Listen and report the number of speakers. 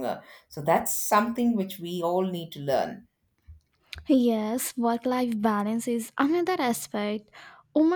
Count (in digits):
2